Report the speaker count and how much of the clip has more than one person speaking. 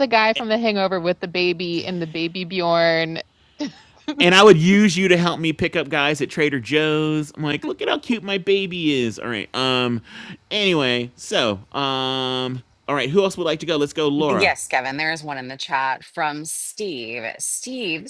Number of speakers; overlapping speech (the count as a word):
three, about 1%